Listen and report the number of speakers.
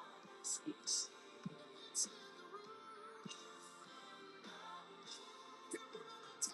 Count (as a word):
zero